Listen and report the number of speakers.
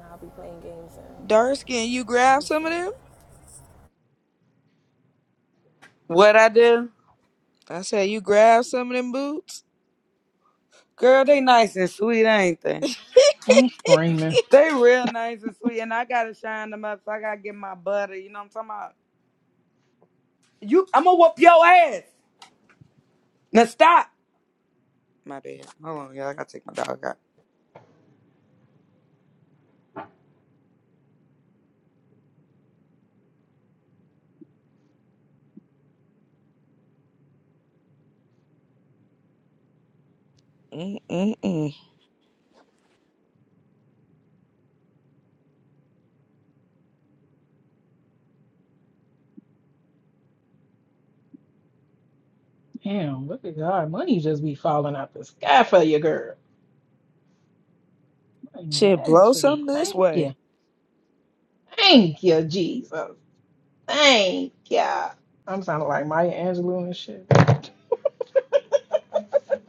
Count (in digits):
4